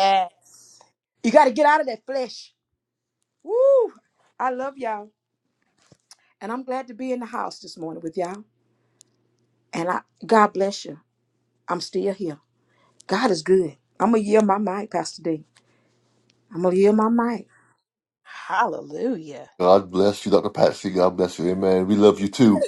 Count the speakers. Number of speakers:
3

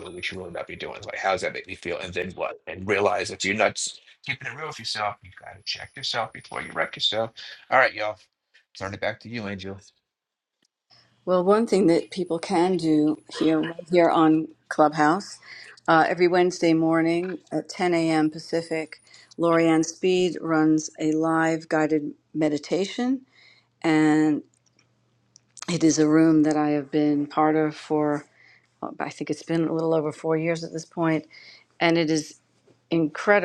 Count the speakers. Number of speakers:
2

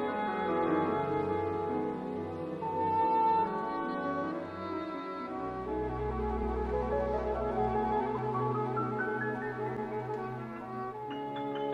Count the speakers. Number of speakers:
0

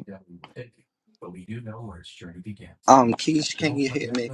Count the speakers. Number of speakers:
2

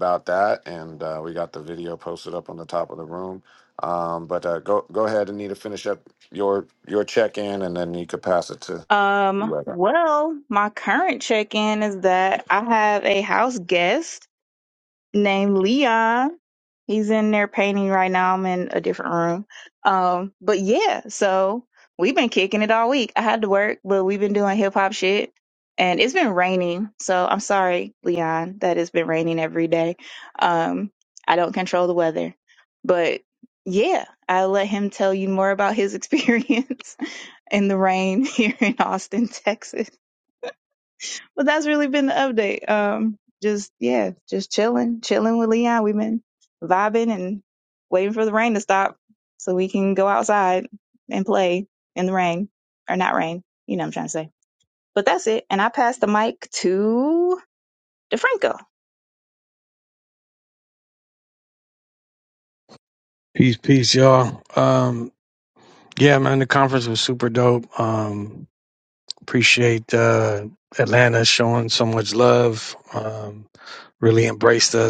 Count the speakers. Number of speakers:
3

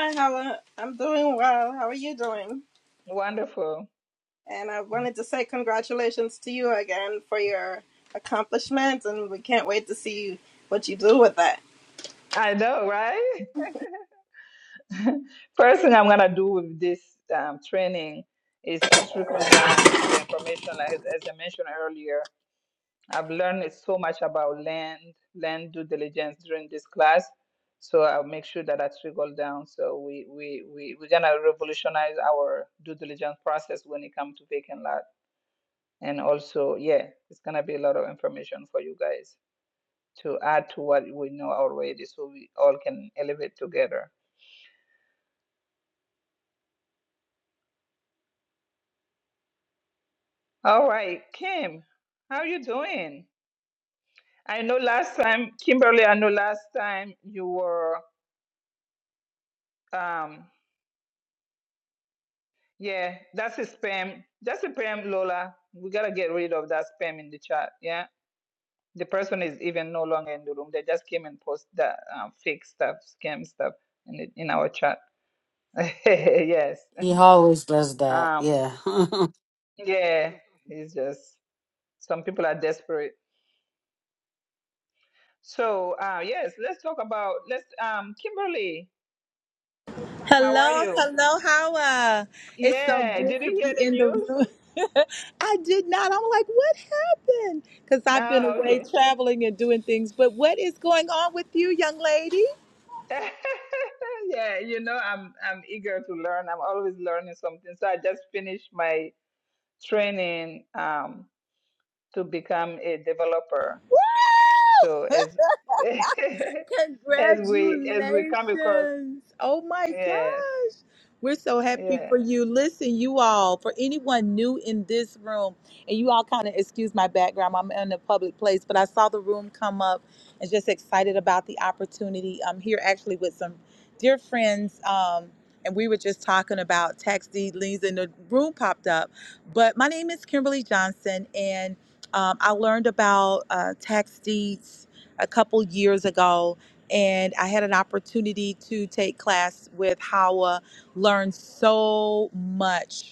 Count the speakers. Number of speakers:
4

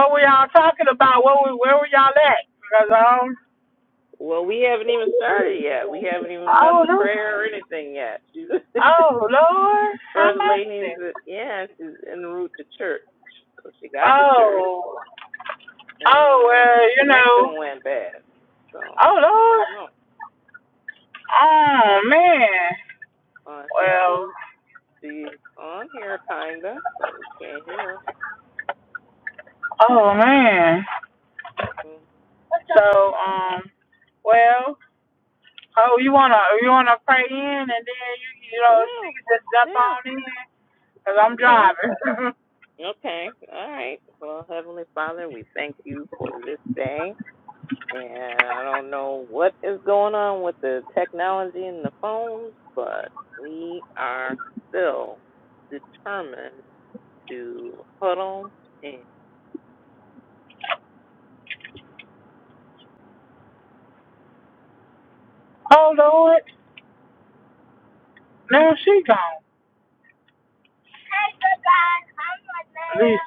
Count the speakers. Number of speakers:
2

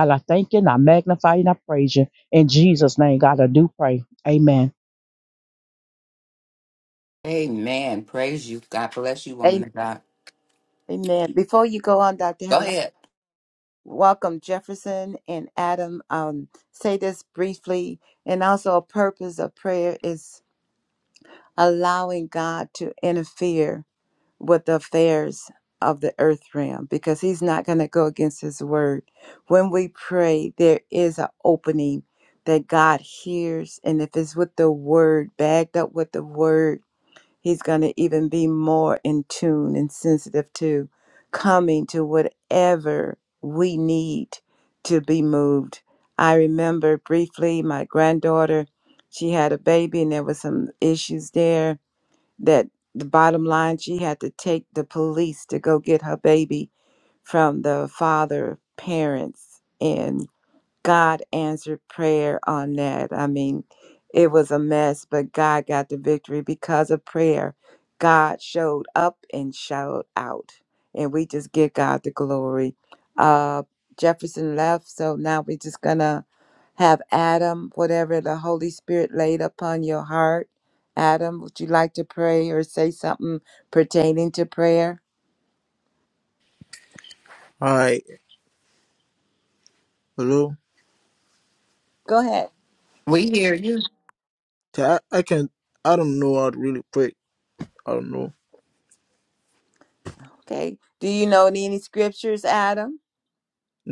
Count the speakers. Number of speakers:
4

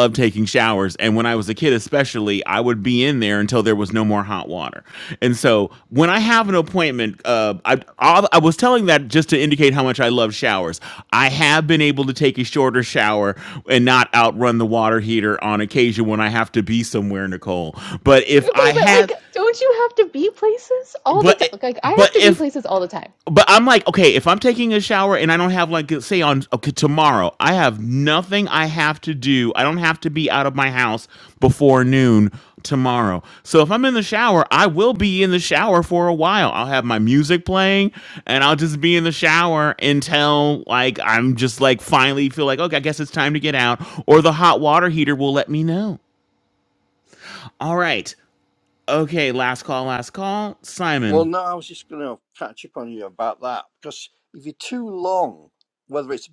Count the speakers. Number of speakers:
3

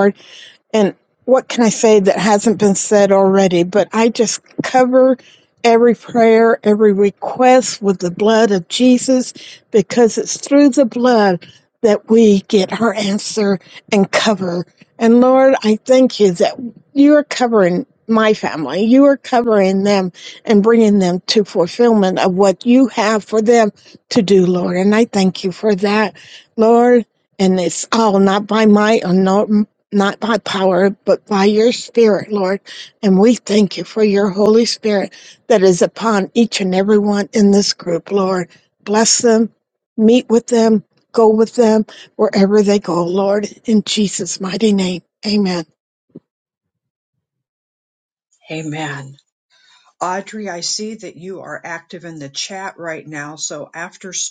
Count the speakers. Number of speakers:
2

